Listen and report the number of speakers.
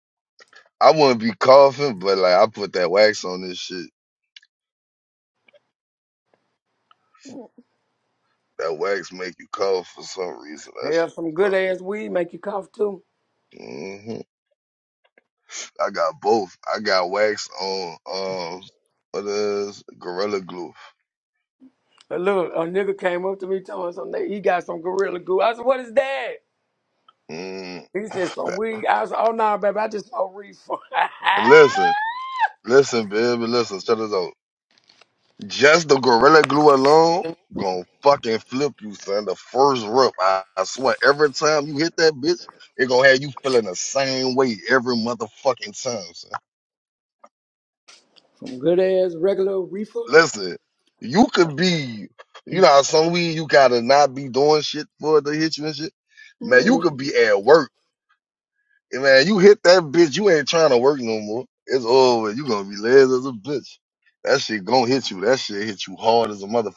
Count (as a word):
two